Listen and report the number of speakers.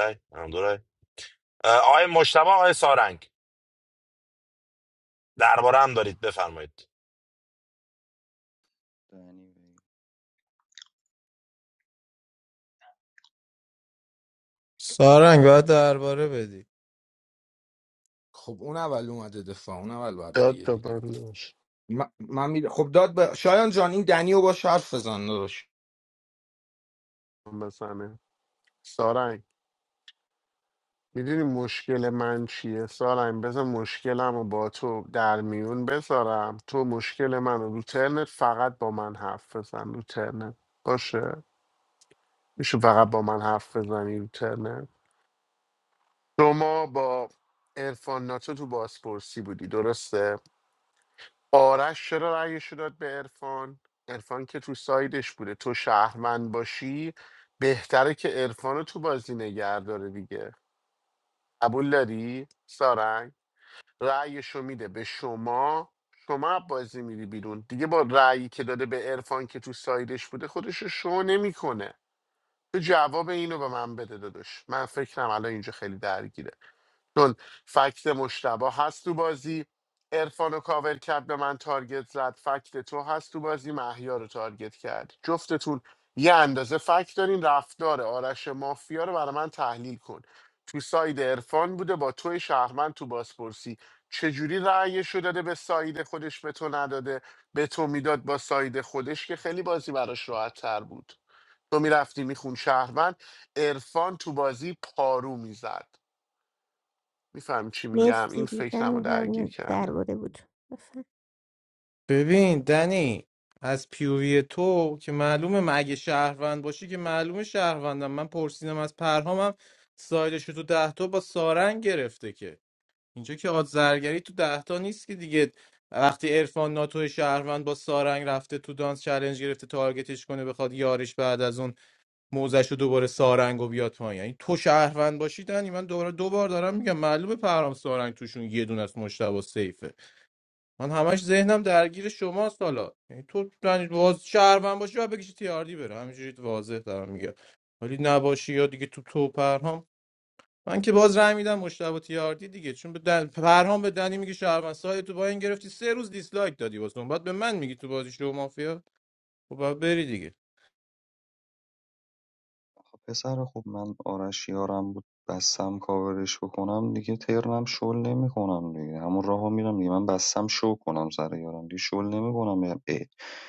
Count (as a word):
six